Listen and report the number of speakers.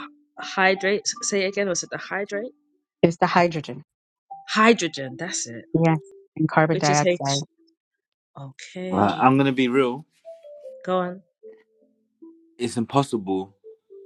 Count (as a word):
three